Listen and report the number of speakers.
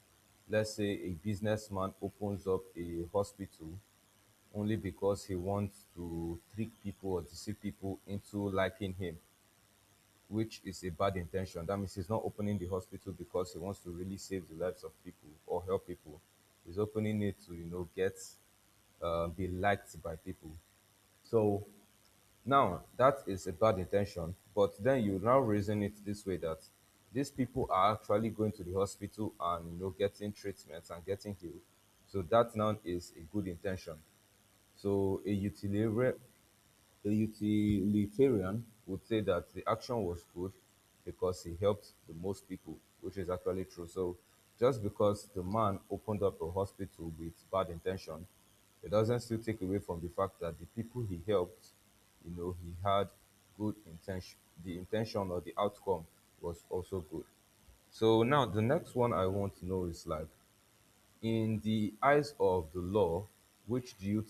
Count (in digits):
1